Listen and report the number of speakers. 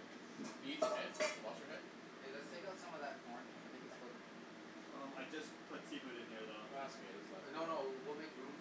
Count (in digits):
3